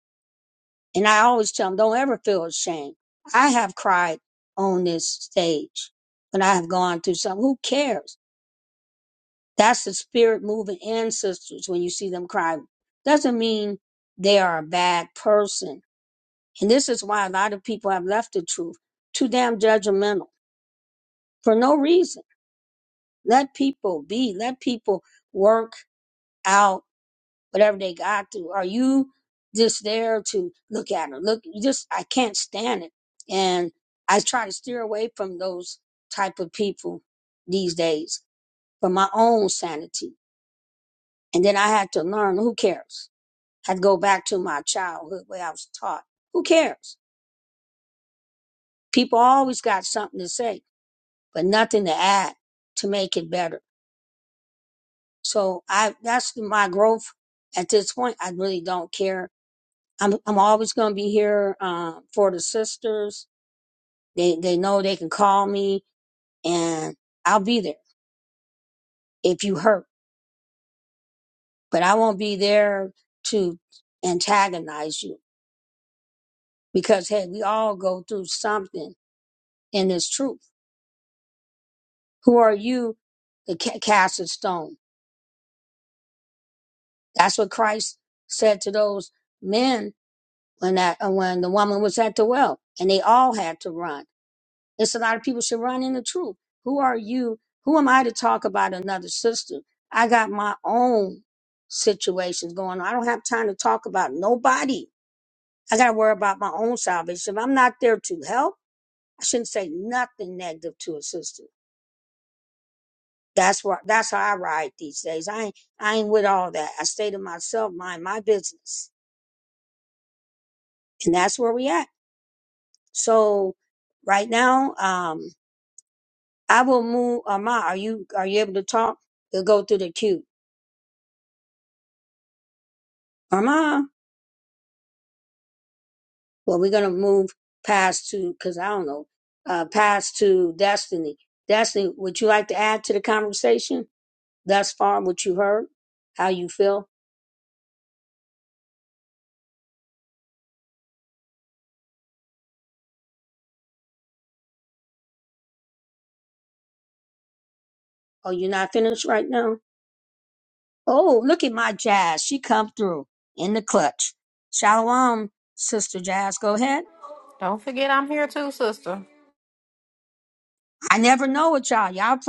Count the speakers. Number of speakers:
2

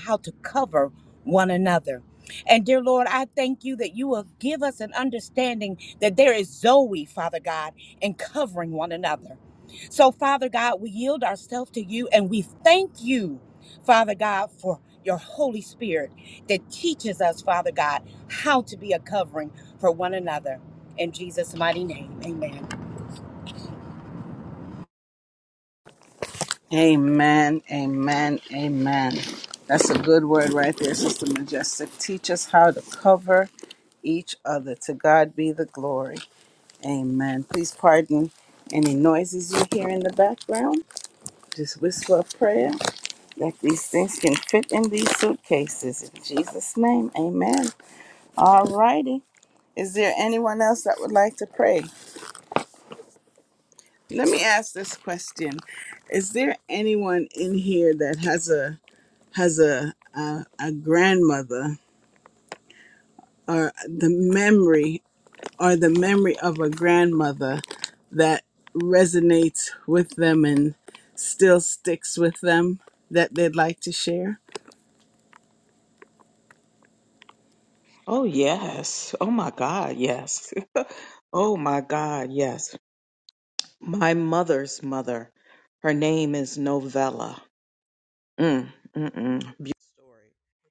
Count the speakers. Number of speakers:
3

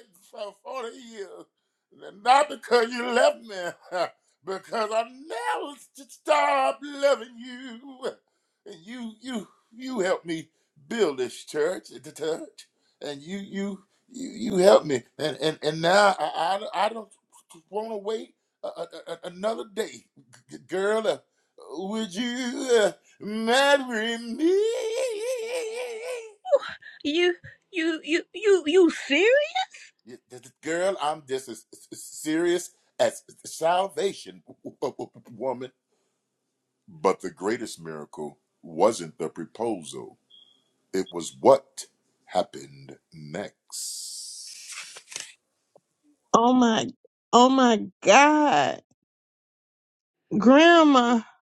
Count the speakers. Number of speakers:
3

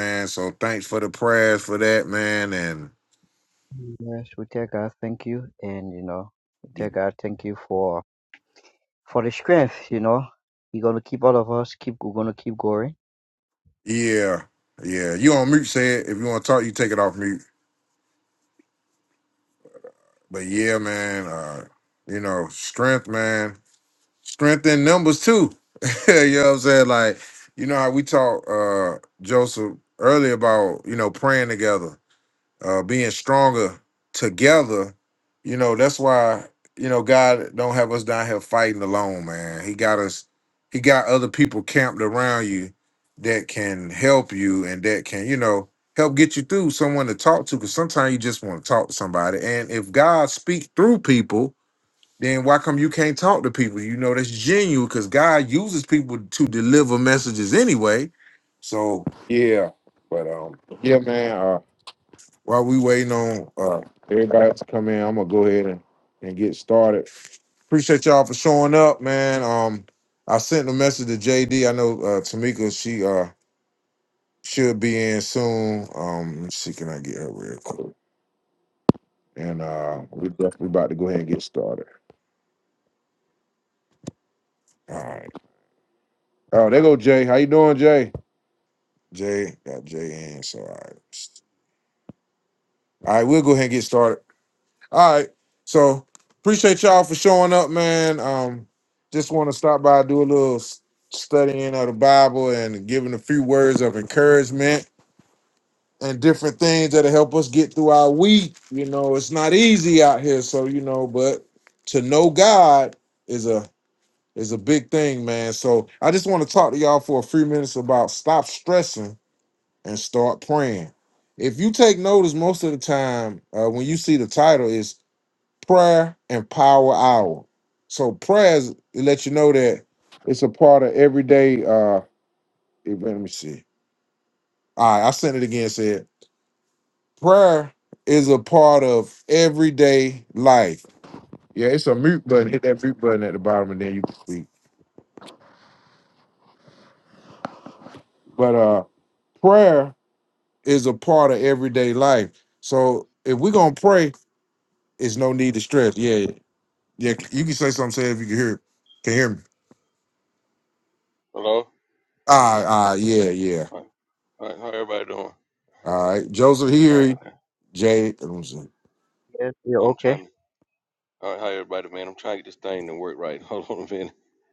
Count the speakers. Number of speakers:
3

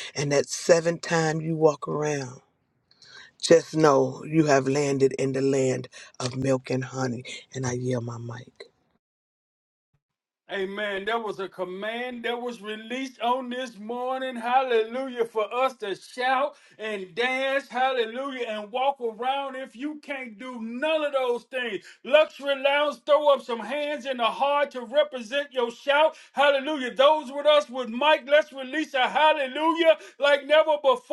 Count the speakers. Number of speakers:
2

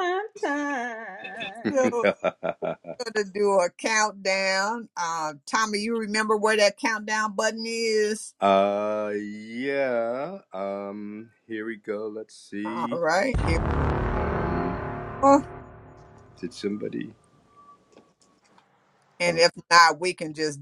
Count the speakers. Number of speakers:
3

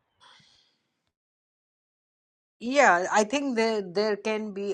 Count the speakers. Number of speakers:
1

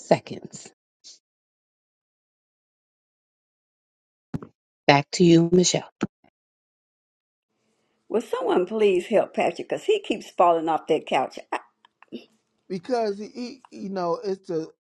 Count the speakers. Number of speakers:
3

